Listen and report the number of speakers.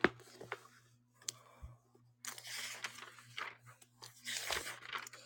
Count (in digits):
0